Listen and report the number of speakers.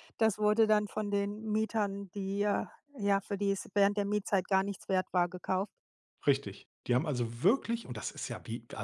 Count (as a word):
two